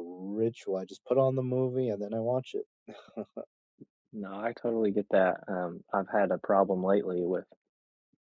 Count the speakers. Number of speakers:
two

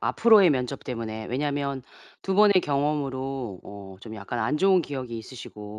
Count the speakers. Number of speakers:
one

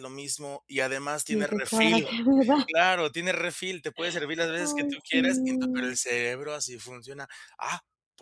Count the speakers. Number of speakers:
two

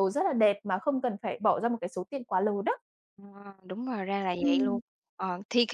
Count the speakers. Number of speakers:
two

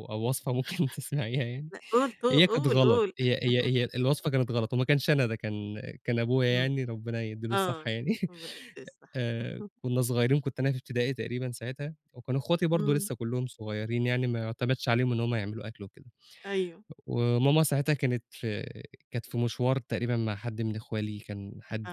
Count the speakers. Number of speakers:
two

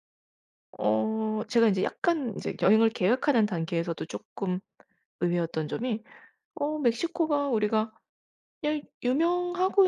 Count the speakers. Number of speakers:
one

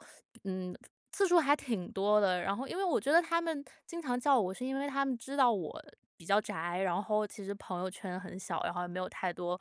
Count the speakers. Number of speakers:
one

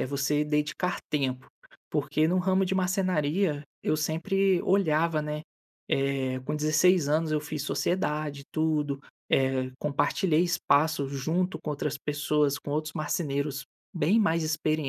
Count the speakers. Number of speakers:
one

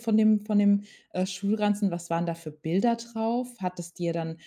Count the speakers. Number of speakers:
one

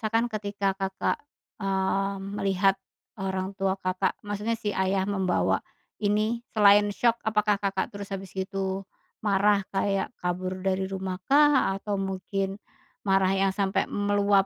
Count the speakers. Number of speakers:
one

